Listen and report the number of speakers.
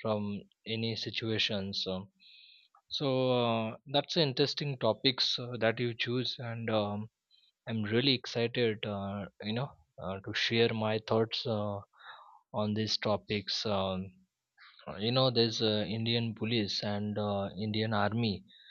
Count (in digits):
1